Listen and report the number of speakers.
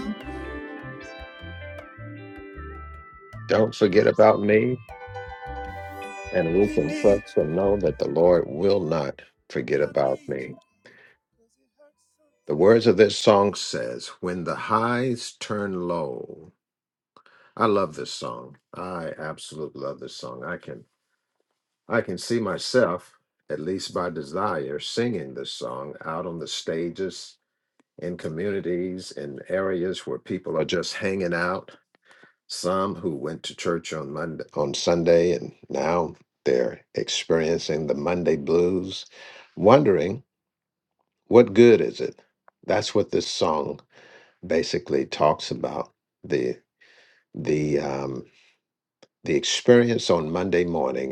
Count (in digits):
2